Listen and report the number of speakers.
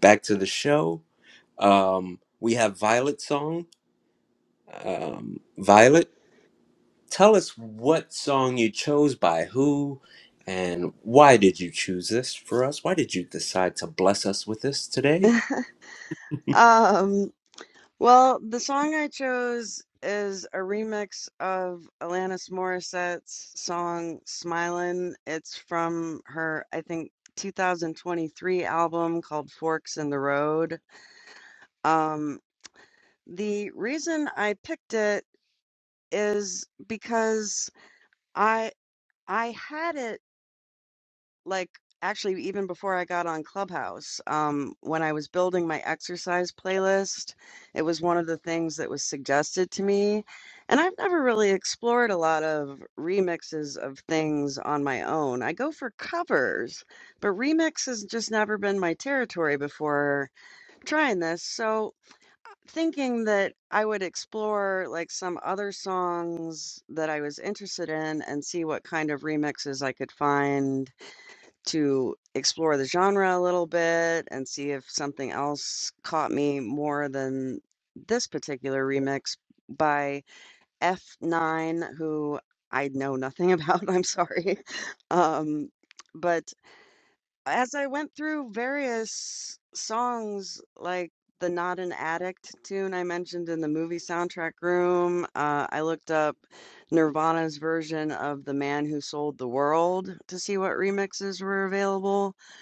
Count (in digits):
2